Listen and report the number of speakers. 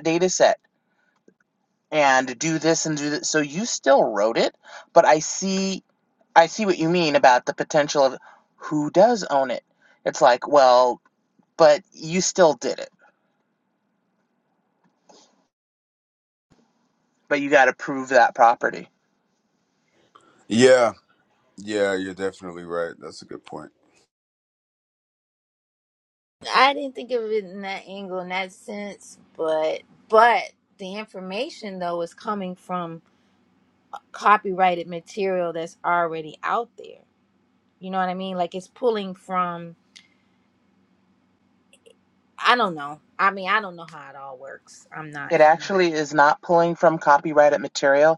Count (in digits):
3